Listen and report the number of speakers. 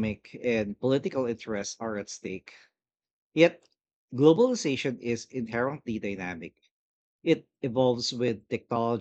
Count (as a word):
one